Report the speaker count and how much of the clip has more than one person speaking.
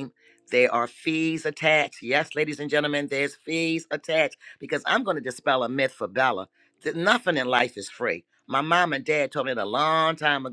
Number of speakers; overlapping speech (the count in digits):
1, no overlap